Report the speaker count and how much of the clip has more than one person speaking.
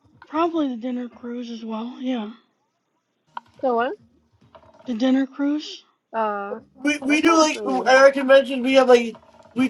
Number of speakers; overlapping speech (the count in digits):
3, about 8%